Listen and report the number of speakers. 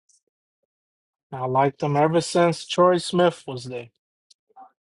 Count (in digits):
1